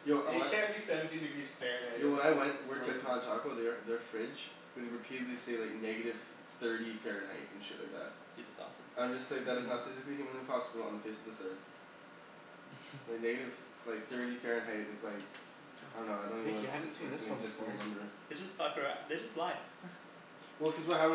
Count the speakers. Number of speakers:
three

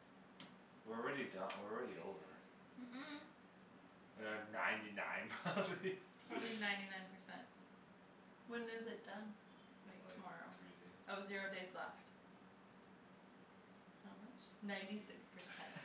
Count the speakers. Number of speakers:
three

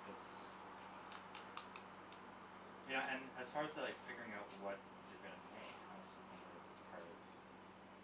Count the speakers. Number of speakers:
one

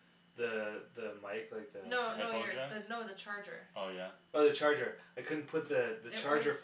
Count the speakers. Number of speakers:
three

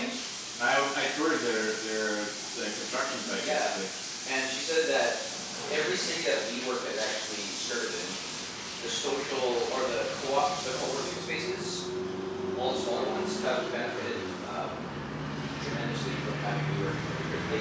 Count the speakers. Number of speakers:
two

